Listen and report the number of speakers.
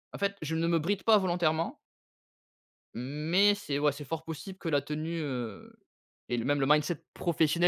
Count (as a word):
one